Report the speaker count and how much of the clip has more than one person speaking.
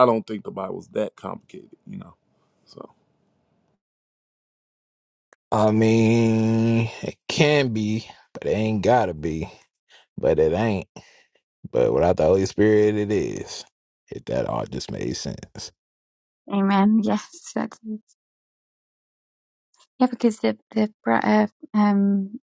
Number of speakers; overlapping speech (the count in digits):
3, no overlap